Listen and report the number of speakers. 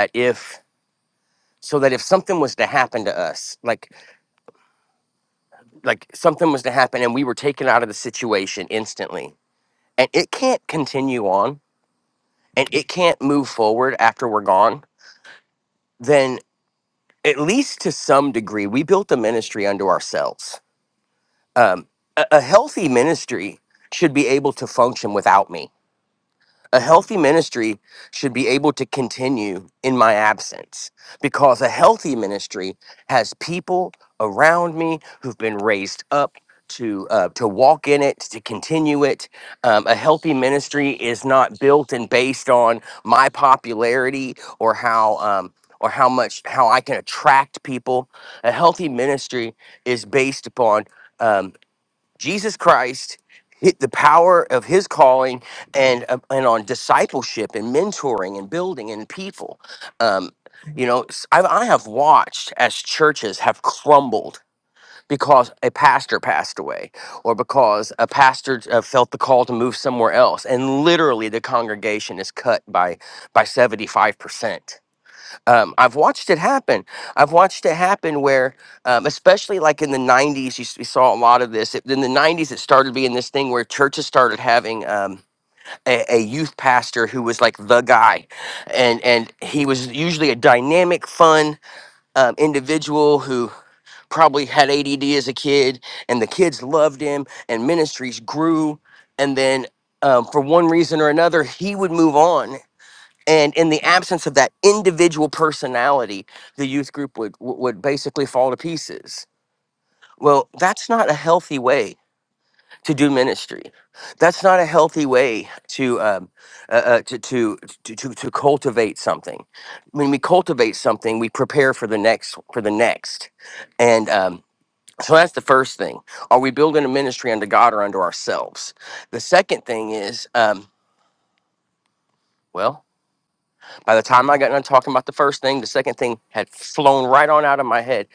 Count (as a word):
one